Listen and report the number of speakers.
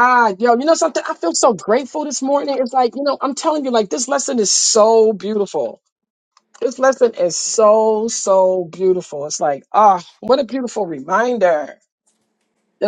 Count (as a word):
one